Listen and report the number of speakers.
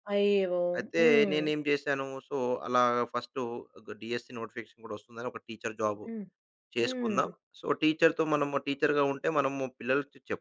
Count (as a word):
two